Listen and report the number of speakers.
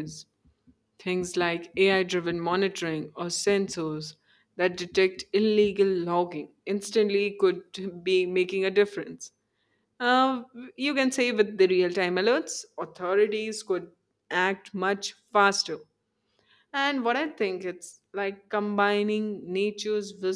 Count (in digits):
1